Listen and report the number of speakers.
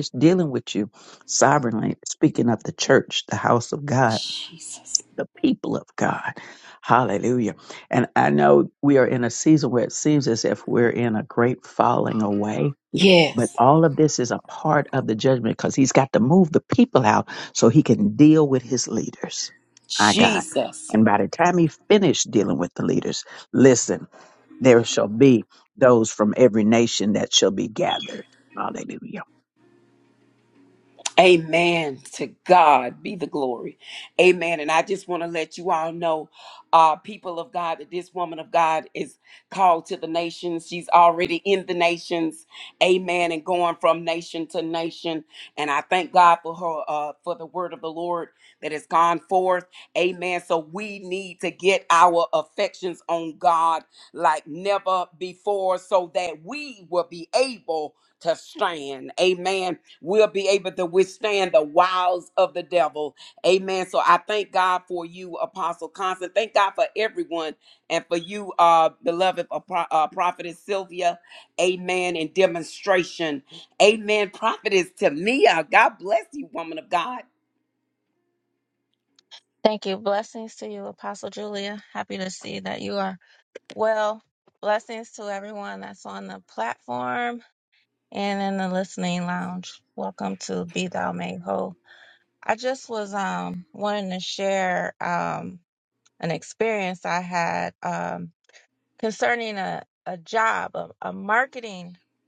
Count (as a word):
three